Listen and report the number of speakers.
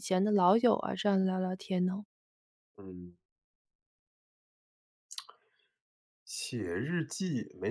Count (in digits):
2